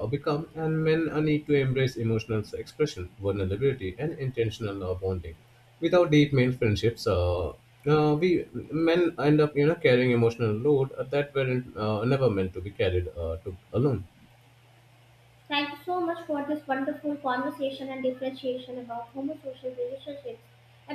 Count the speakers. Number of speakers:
2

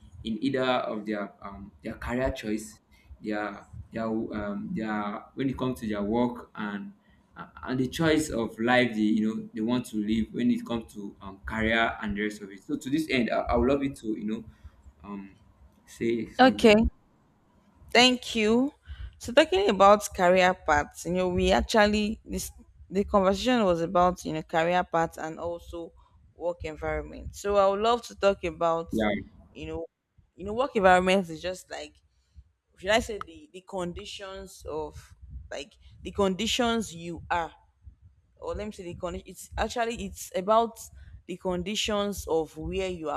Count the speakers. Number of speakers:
2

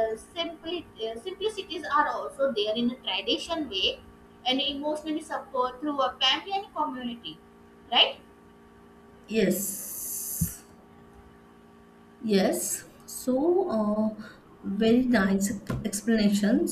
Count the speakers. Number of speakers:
2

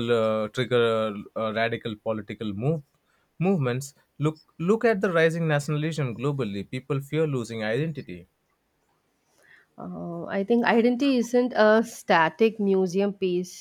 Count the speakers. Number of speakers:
2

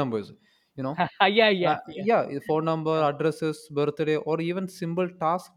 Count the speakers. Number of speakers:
2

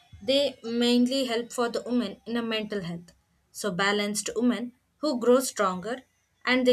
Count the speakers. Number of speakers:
1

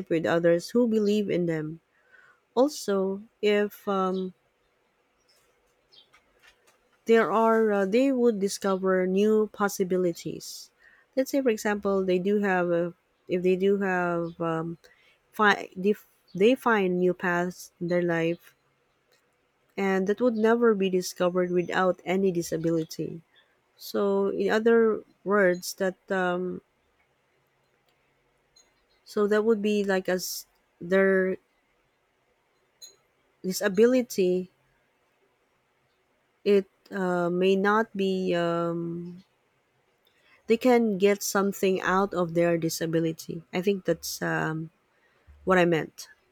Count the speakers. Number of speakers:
1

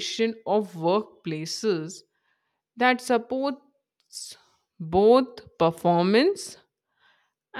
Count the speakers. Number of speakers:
1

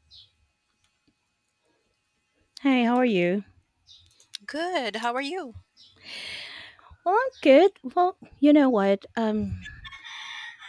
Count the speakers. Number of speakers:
2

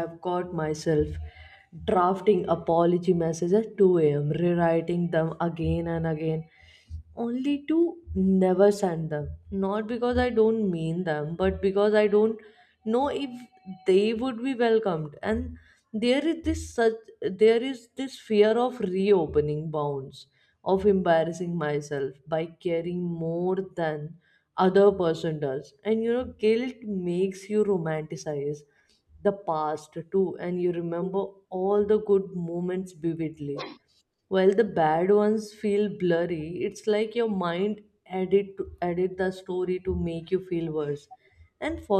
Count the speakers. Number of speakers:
1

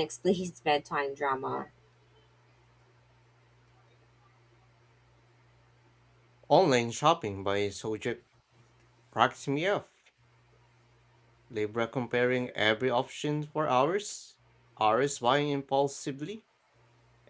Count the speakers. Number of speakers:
2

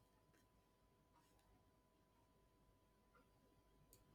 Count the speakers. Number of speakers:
0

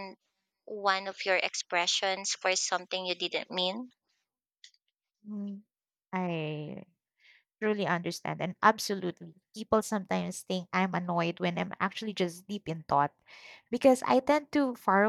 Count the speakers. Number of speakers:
2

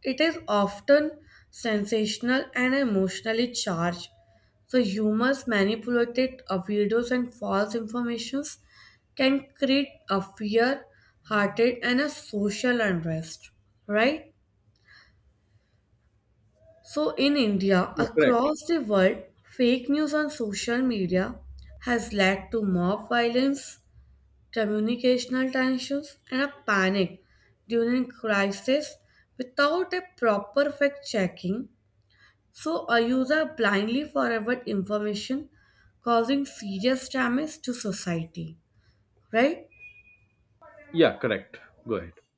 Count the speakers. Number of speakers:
2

